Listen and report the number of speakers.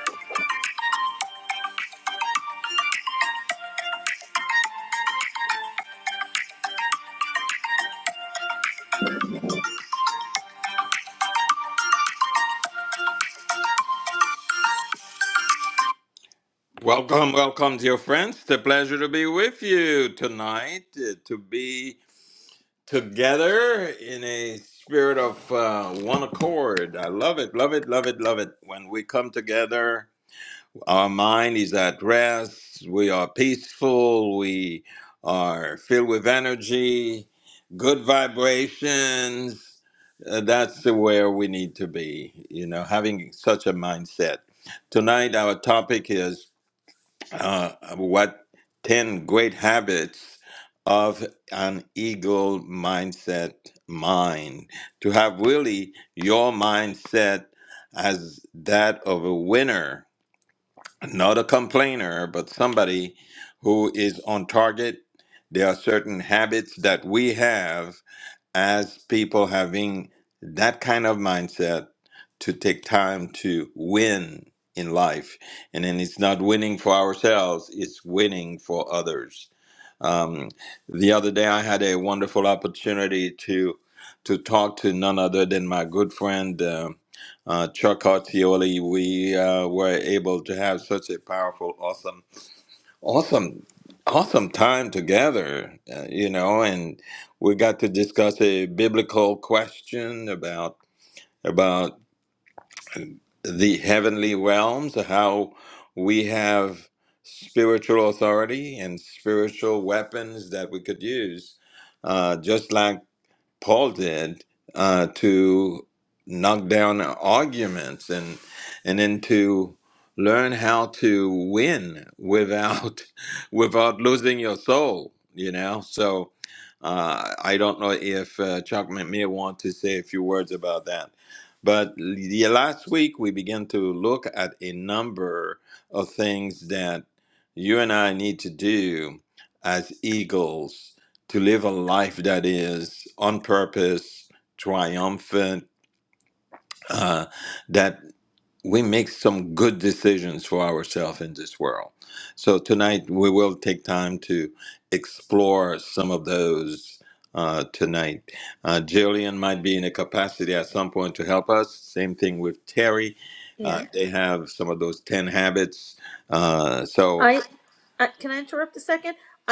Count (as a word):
two